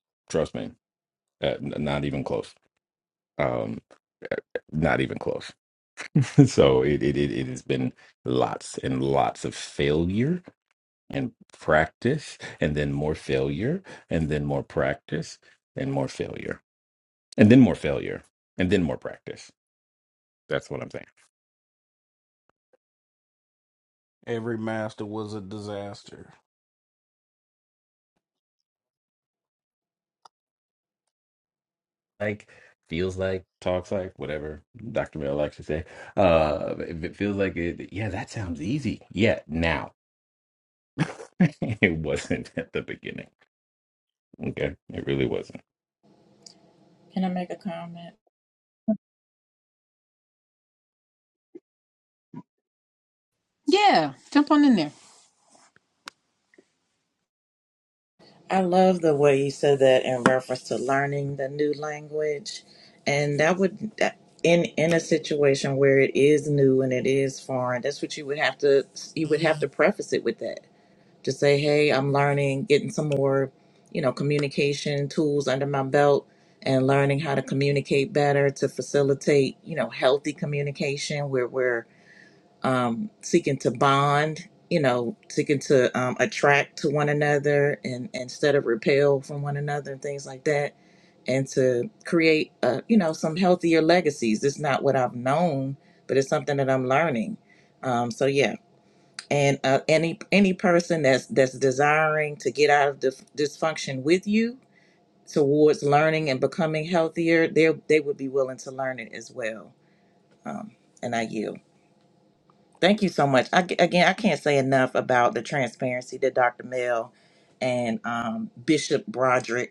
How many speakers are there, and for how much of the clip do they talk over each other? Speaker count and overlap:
4, no overlap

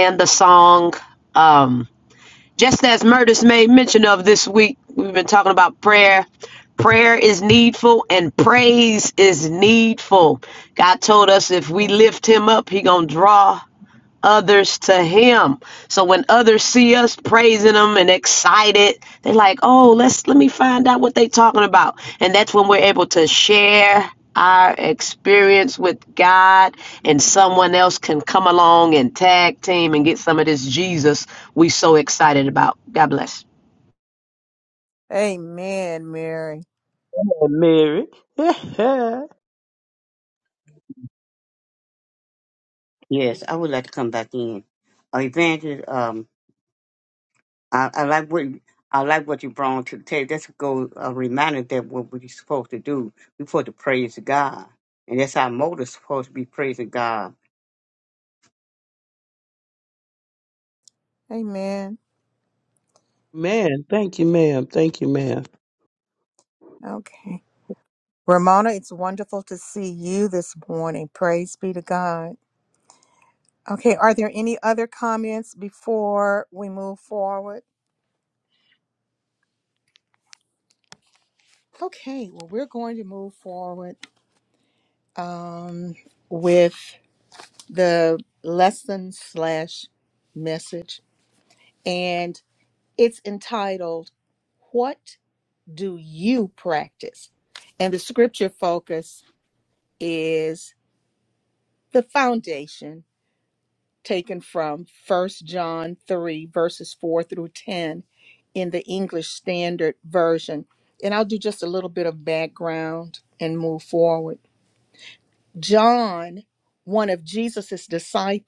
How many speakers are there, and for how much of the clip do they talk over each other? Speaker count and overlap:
4, under 1%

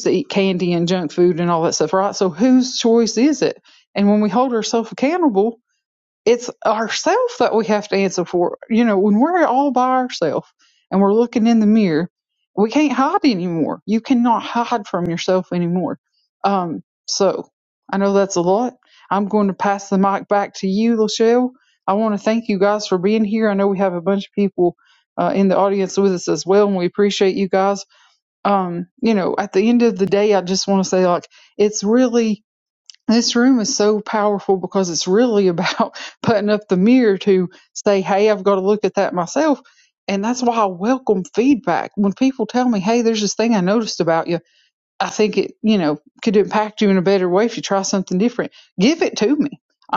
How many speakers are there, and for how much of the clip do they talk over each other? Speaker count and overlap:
1, no overlap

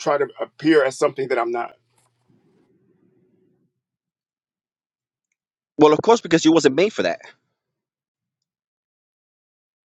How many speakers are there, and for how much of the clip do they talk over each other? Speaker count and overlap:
2, no overlap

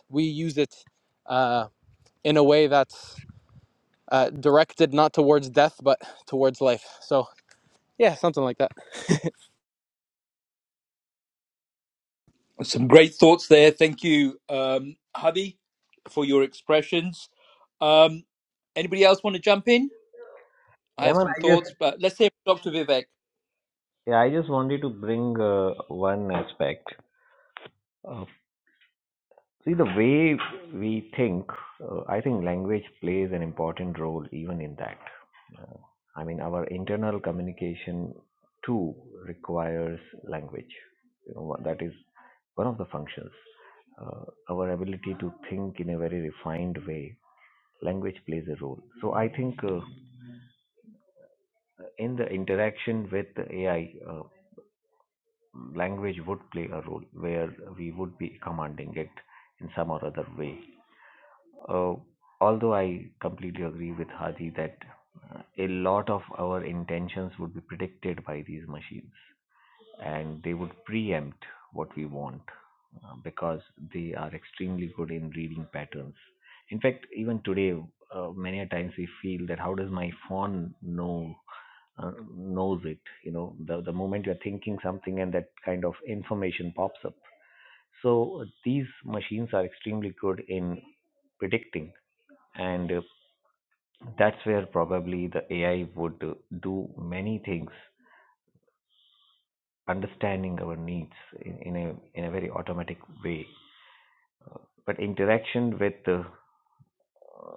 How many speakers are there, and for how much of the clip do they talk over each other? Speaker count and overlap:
3, about 1%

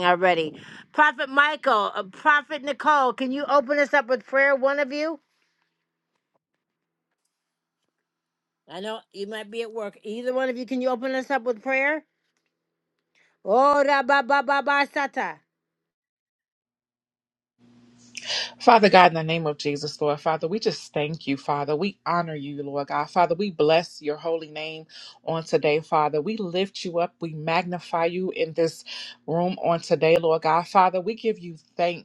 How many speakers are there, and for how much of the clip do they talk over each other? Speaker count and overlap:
2, no overlap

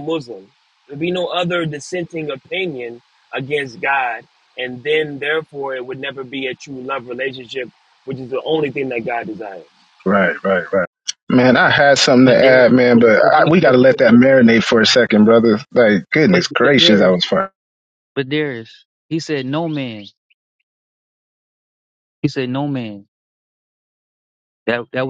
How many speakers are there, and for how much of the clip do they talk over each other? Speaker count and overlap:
3, about 9%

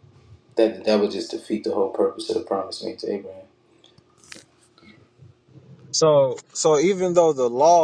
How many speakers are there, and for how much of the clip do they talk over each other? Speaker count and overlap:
2, no overlap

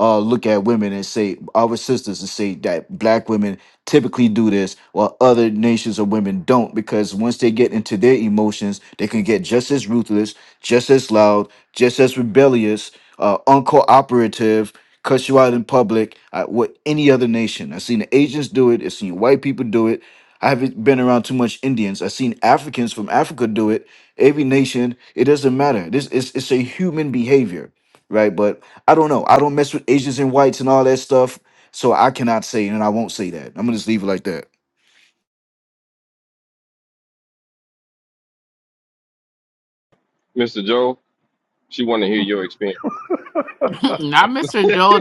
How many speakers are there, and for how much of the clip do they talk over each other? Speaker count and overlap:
3, no overlap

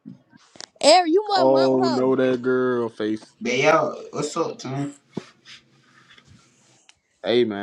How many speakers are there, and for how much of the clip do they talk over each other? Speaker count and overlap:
3, about 10%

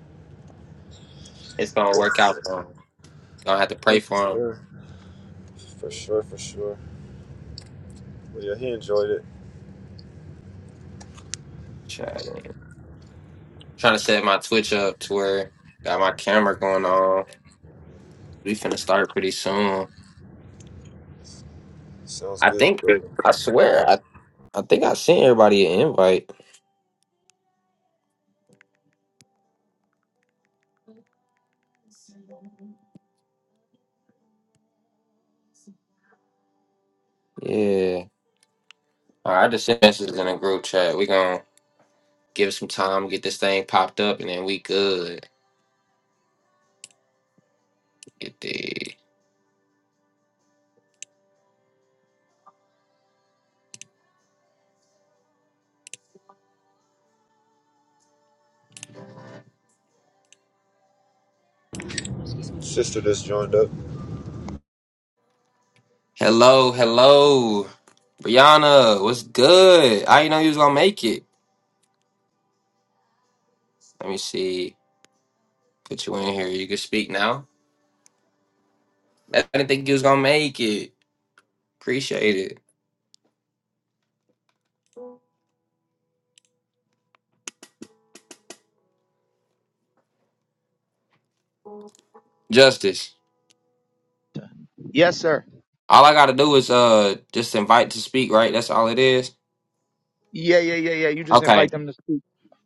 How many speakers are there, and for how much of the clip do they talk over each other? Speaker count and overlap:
3, about 1%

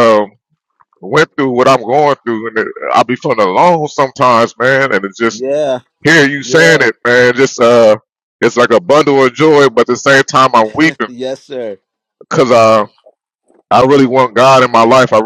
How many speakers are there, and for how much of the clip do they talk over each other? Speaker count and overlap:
2, about 3%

